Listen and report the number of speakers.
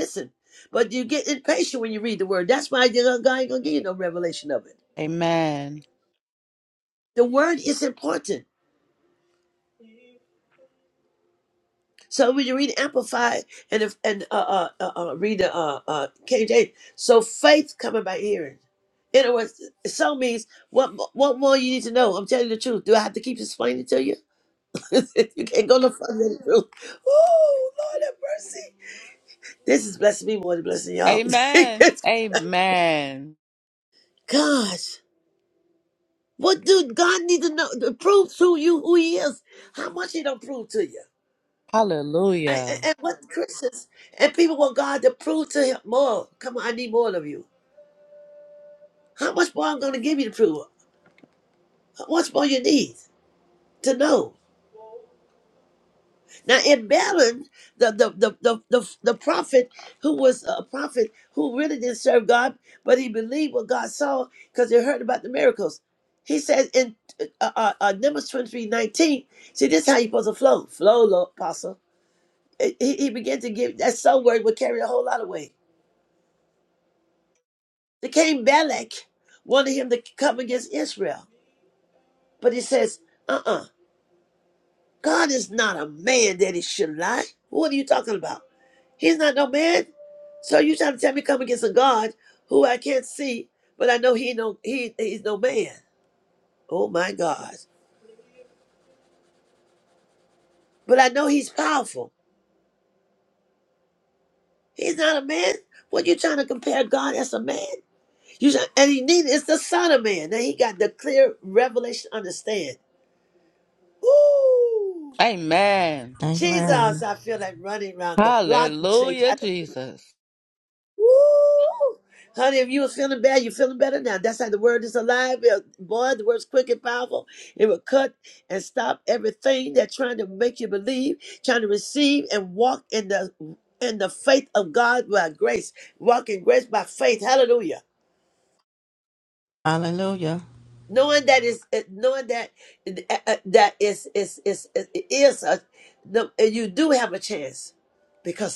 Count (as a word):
three